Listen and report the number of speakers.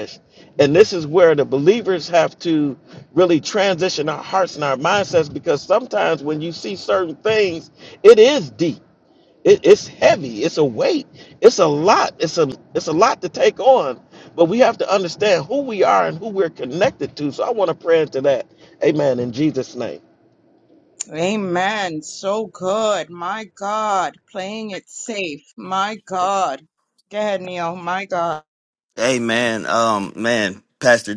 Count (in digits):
3